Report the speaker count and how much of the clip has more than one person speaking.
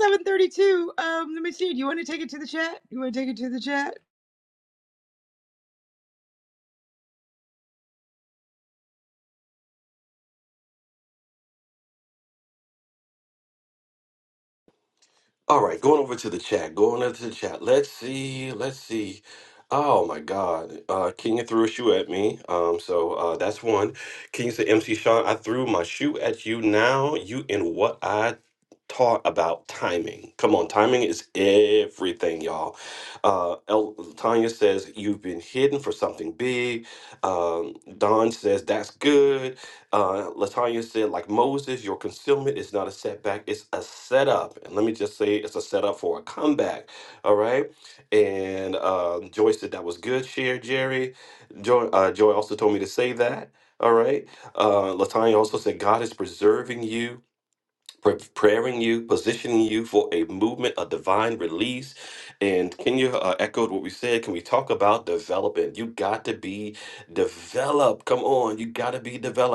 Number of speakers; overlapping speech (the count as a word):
two, no overlap